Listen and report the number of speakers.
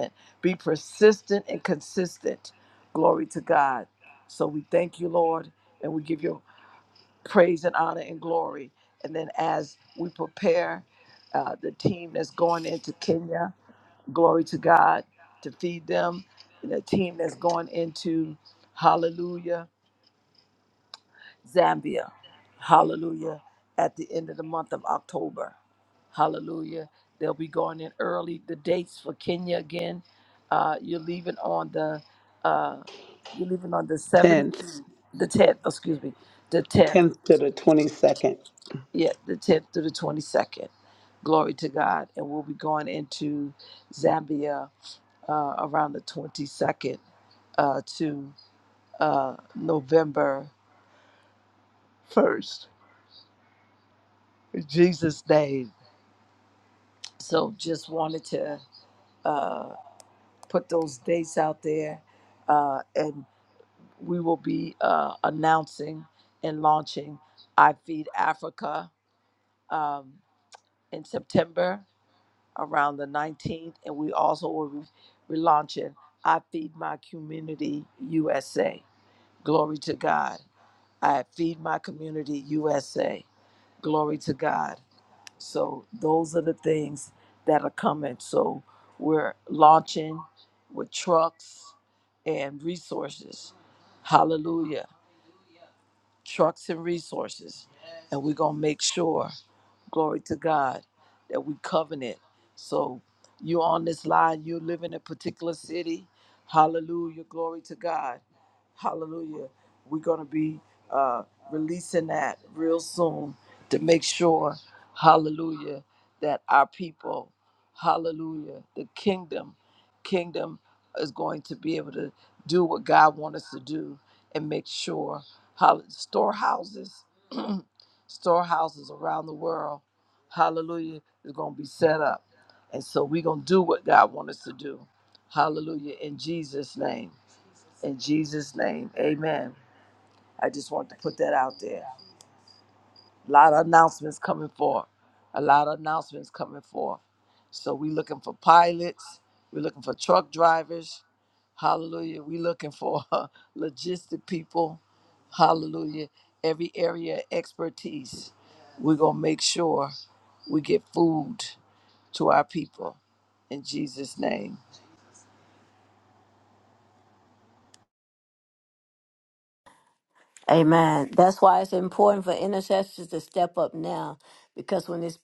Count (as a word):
three